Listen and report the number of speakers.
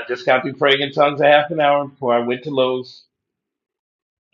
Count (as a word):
one